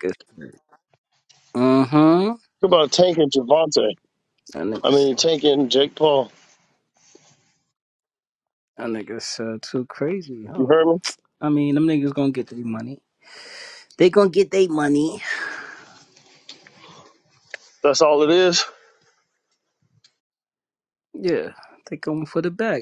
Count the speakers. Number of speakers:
2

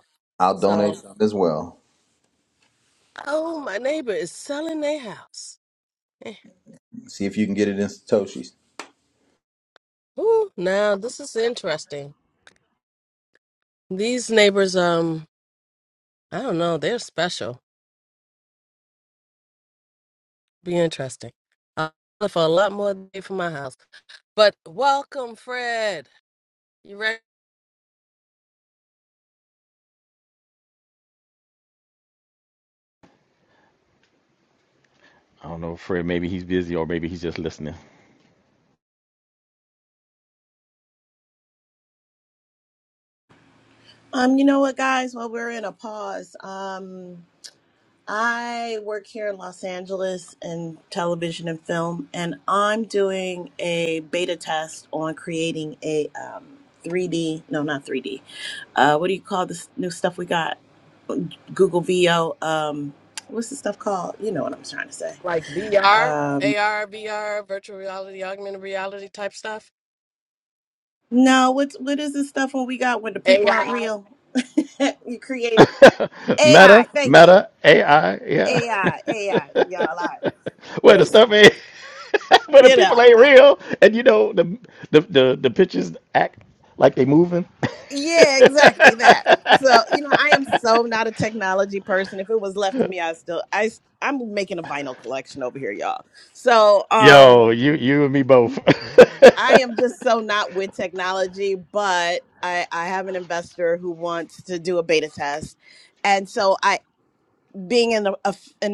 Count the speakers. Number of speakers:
4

